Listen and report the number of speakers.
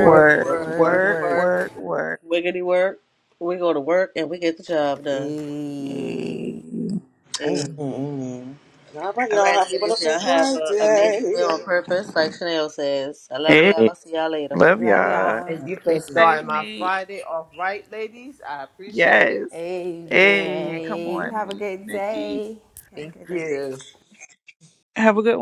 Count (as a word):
five